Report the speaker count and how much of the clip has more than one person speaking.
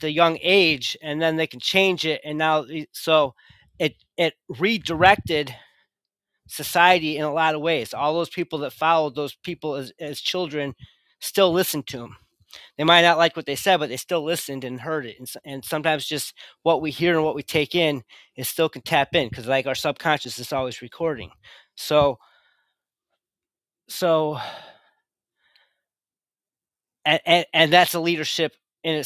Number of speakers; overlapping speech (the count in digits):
1, no overlap